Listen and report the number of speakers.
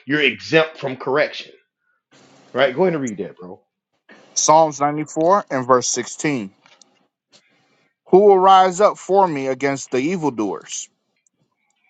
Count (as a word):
two